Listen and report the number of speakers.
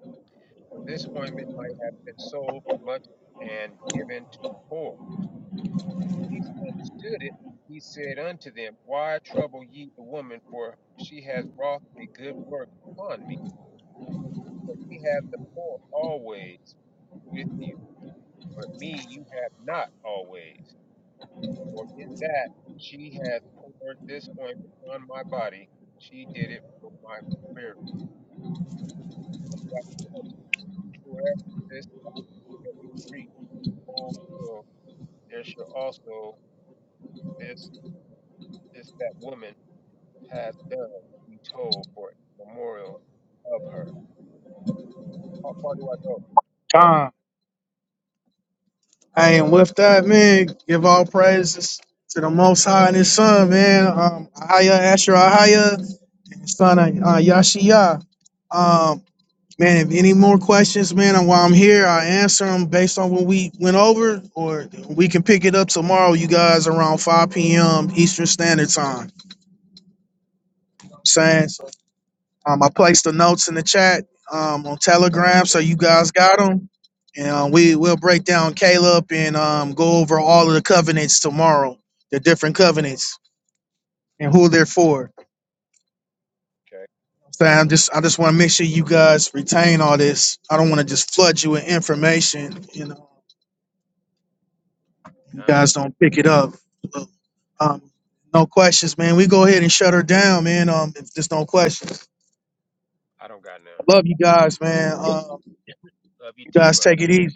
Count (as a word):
two